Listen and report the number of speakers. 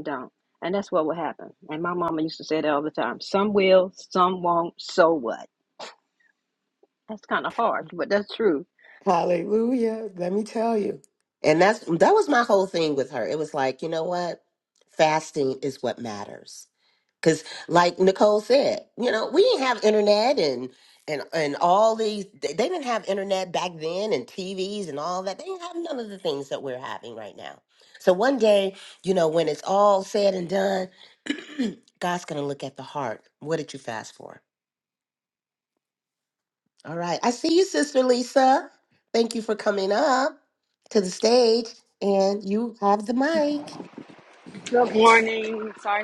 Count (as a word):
three